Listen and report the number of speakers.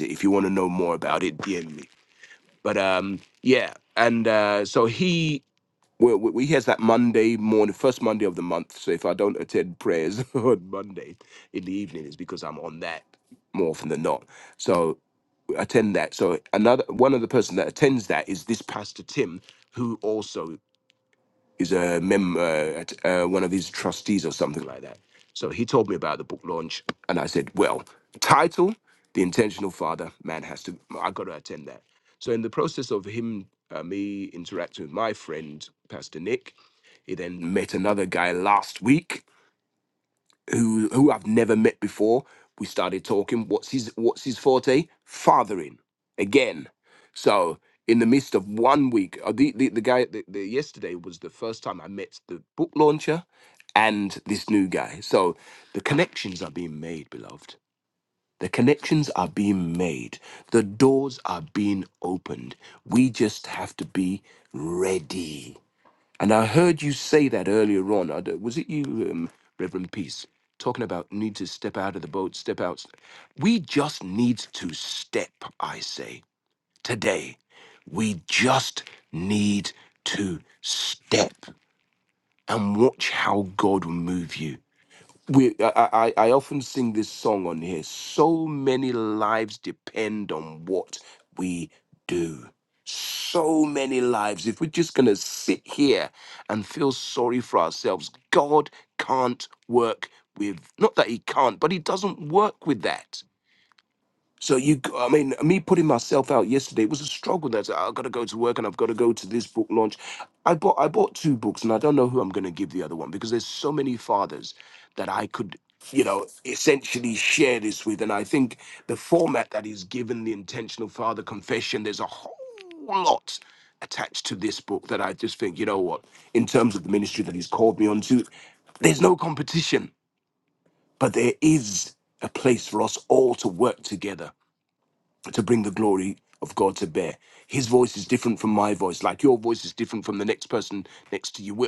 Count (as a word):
one